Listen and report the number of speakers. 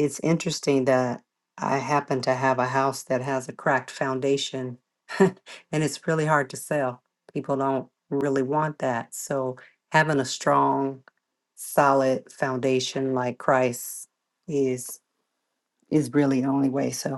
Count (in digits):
1